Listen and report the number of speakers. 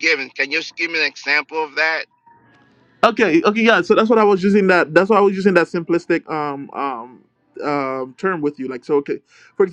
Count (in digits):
2